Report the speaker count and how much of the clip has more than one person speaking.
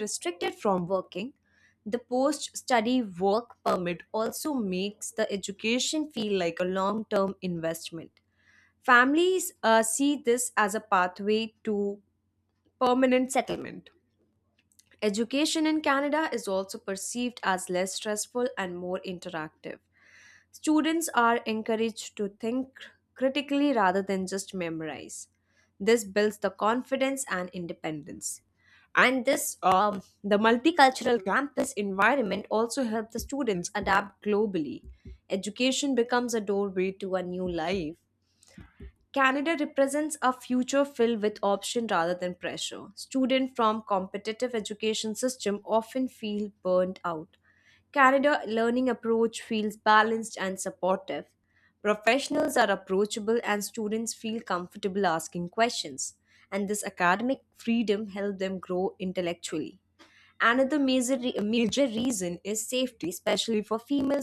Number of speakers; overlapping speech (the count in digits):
1, no overlap